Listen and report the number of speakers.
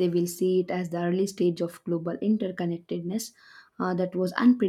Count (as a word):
one